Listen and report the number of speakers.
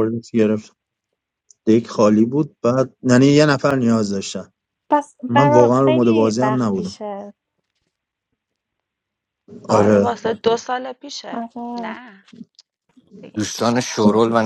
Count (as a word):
four